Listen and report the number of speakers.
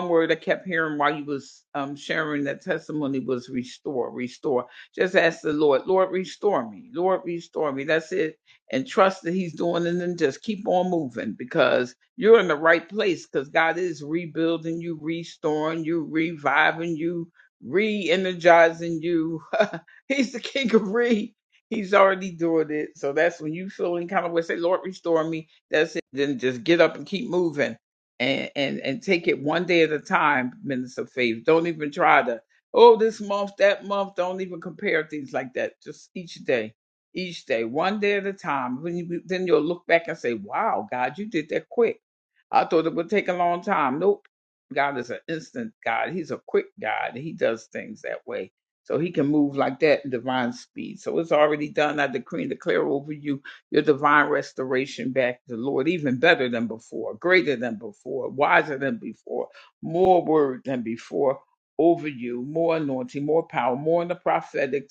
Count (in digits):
1